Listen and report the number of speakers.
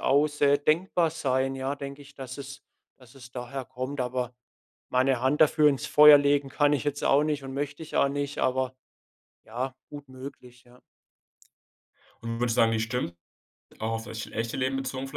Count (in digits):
2